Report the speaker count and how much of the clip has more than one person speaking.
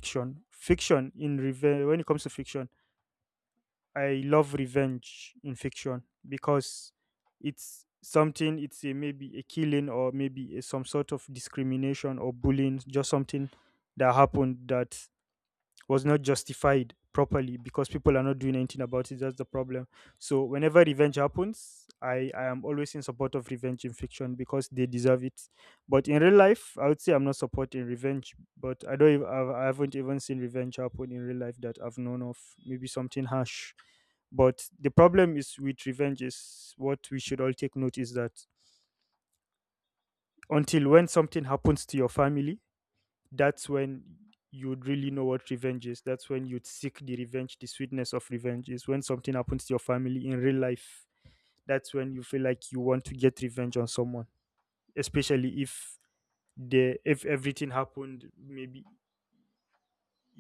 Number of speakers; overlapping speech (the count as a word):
one, no overlap